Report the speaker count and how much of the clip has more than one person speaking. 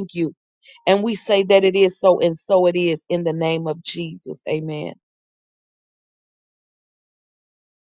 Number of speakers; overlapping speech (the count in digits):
1, no overlap